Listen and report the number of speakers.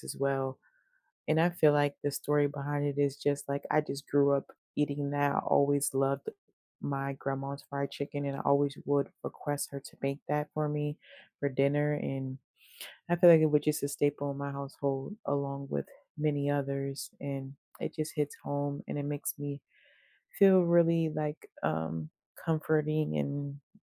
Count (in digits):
1